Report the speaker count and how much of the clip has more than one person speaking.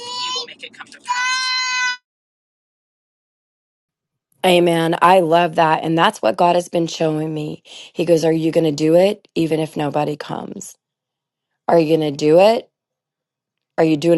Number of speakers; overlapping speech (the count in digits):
2, no overlap